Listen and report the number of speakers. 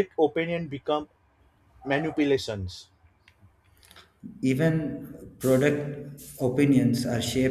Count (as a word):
two